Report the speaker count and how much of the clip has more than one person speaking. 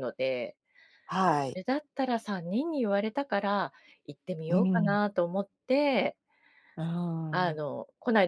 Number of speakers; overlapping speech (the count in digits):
2, about 7%